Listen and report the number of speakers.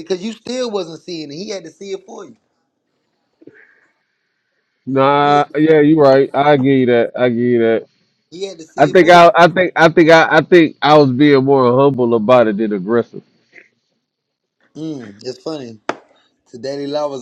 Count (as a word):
two